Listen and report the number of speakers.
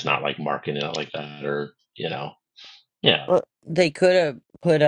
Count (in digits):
2